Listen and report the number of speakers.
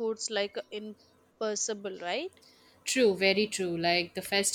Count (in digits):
2